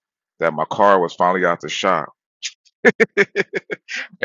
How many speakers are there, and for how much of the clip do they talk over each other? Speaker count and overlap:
one, no overlap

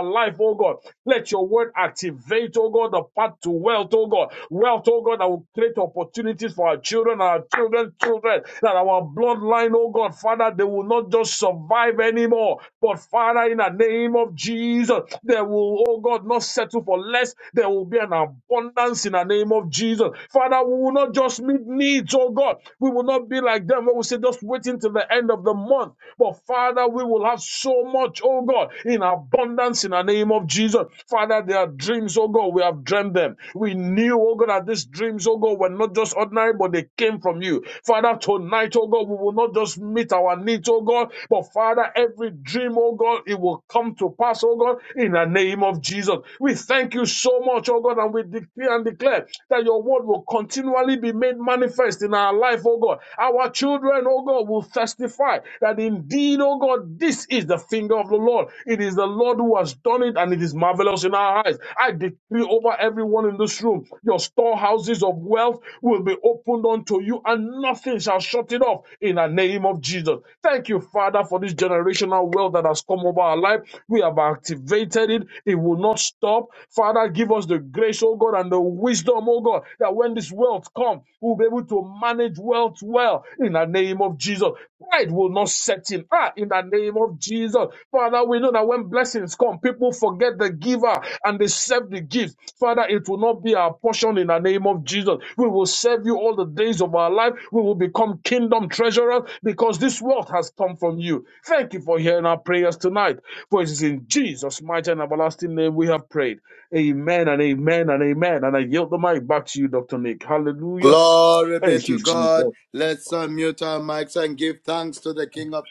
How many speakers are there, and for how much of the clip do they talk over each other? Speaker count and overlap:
two, about 1%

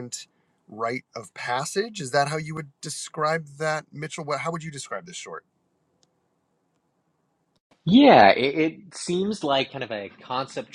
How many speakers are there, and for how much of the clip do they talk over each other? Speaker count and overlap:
two, no overlap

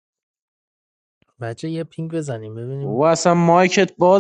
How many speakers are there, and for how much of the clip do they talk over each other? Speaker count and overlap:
two, about 3%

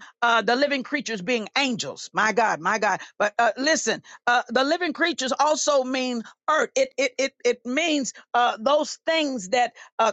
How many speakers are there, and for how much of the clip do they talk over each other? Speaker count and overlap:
one, no overlap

